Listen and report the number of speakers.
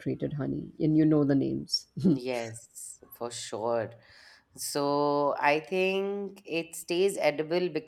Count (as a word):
two